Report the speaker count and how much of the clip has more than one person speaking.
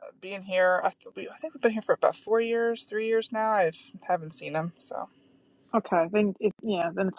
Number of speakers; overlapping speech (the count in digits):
2, no overlap